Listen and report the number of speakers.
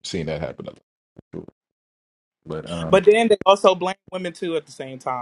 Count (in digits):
2